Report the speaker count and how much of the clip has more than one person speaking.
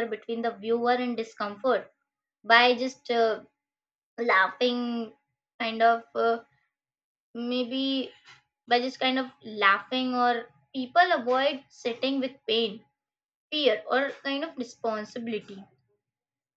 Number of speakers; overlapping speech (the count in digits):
1, no overlap